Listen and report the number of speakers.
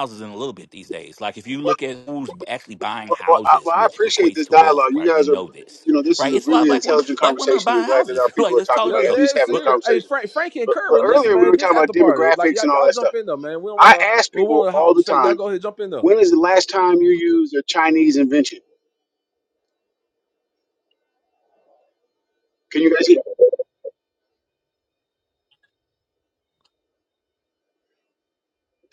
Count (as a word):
three